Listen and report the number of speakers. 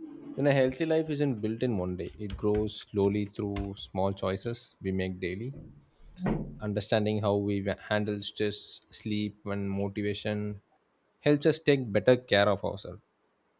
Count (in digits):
1